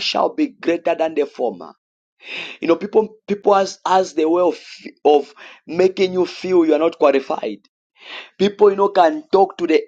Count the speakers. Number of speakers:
one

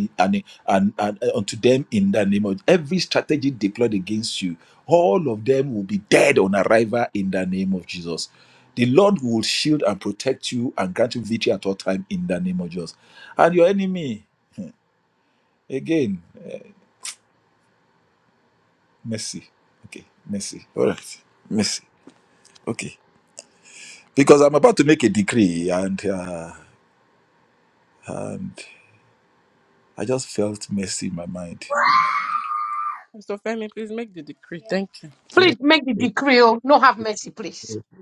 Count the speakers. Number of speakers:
three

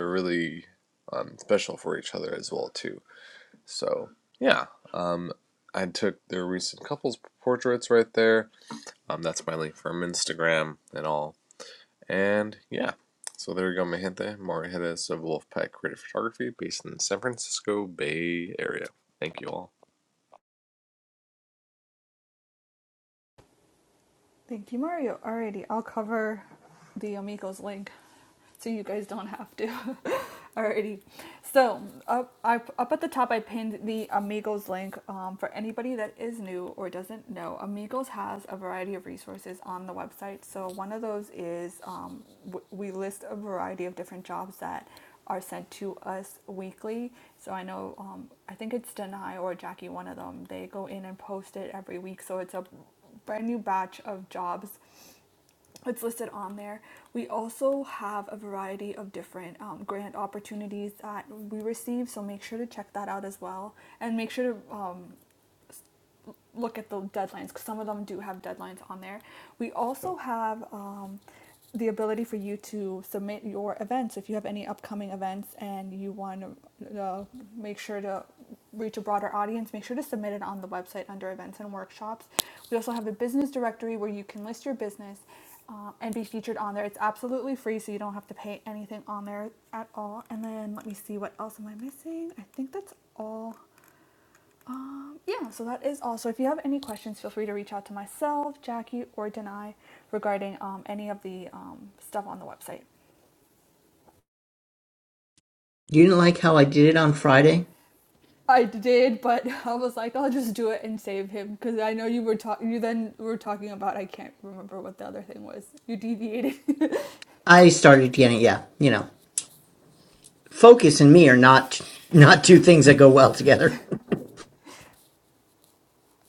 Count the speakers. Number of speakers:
three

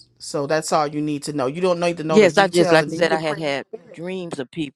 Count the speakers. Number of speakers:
two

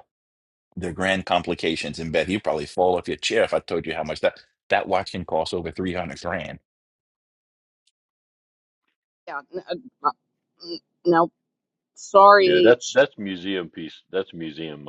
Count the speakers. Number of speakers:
three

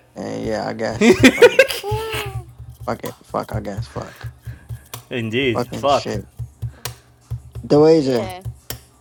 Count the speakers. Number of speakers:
three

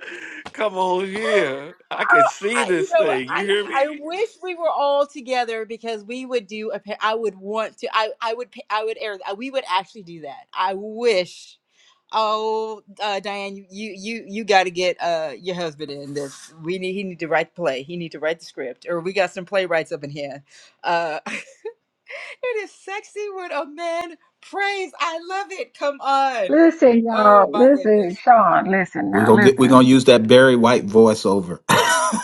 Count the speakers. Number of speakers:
four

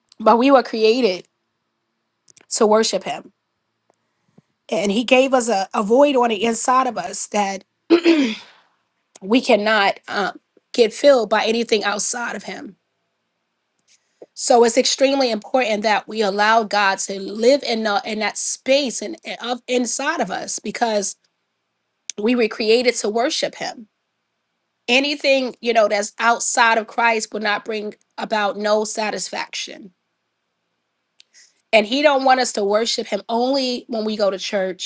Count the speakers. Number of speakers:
one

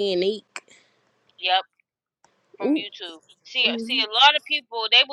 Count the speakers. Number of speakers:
two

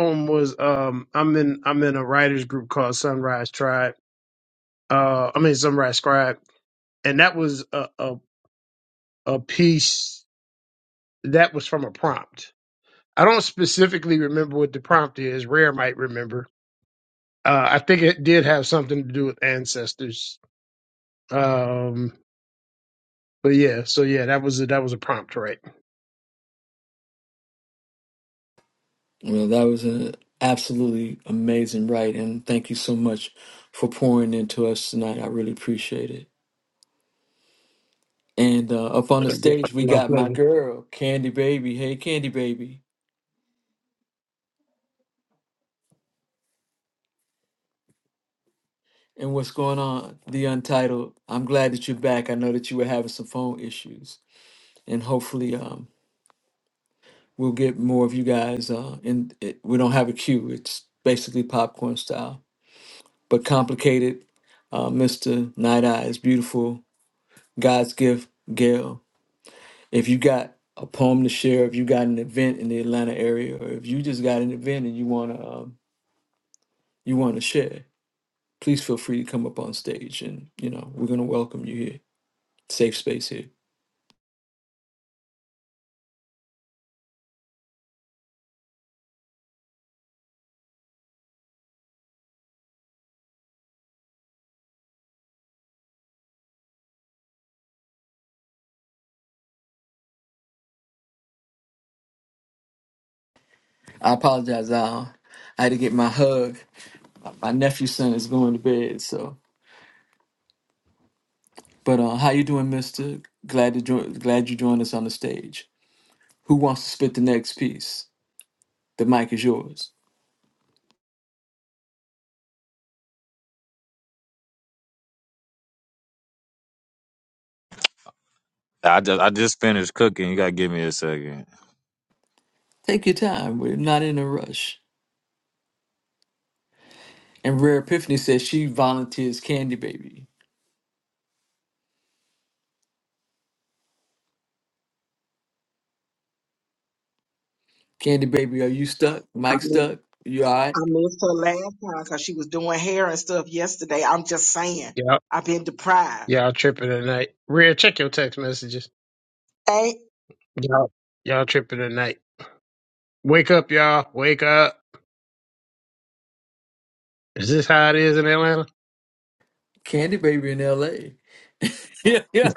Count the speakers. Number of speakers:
four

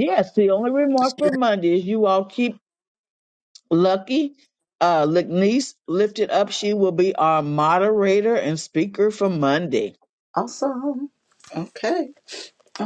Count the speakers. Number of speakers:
two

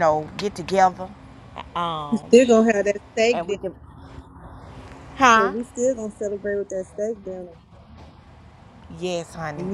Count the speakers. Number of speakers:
two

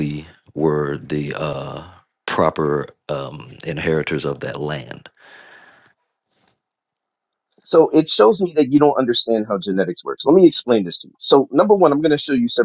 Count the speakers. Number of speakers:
two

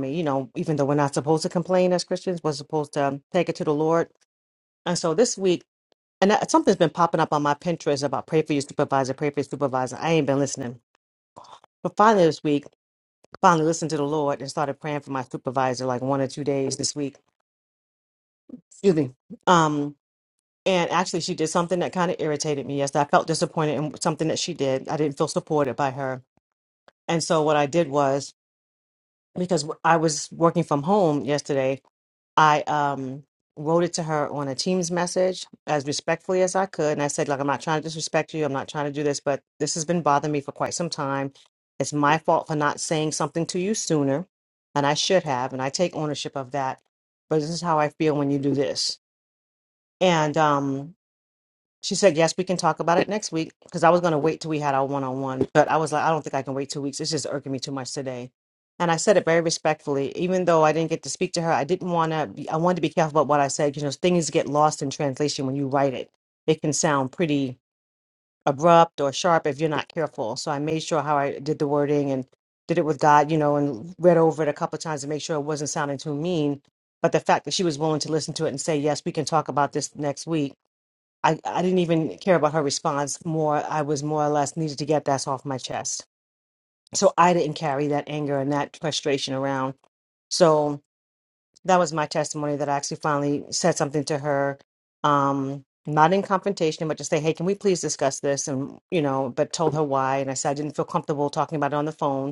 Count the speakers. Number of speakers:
one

